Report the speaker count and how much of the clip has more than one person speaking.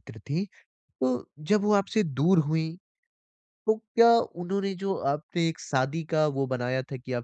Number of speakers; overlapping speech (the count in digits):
1, no overlap